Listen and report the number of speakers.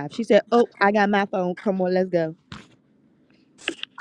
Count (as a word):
one